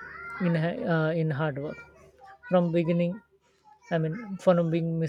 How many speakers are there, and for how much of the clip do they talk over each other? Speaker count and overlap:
1, no overlap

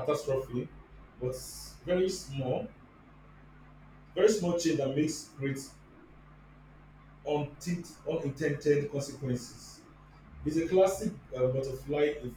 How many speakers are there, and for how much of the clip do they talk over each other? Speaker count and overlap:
1, no overlap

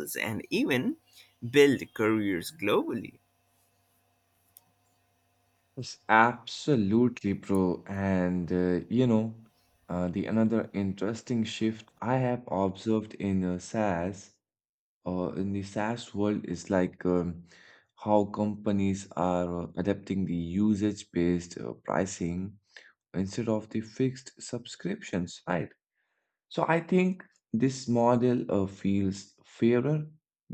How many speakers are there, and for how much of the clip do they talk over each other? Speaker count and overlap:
2, no overlap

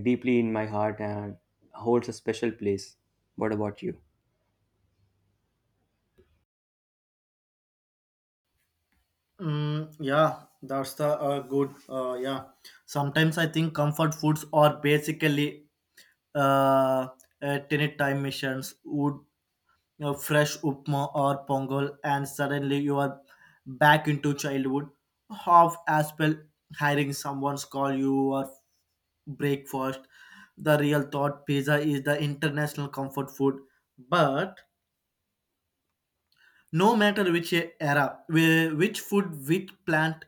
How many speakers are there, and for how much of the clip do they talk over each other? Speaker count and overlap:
2, no overlap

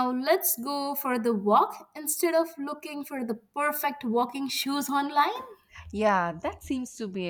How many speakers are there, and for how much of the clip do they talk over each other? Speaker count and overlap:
2, no overlap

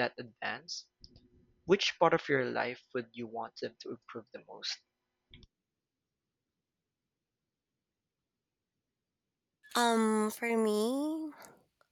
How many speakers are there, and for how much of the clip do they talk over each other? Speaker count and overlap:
2, no overlap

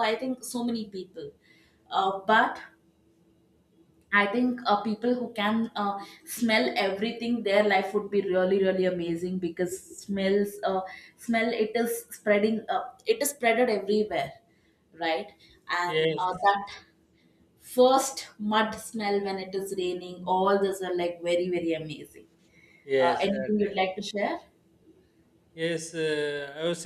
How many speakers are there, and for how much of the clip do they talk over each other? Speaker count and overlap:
2, about 4%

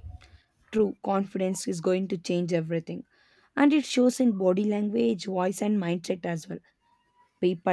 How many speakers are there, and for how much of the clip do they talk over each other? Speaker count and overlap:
1, no overlap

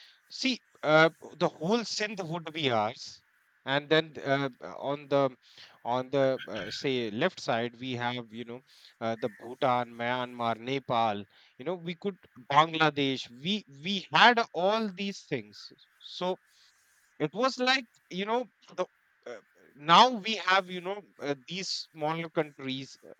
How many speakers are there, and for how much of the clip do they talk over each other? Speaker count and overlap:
1, no overlap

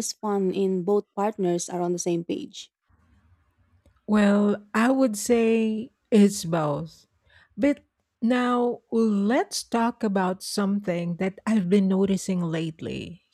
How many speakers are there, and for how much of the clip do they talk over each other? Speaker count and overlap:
2, no overlap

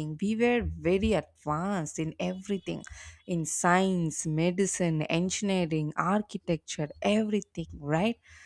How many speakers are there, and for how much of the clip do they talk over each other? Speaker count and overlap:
1, no overlap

